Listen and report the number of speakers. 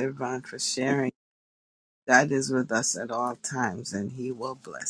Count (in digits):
1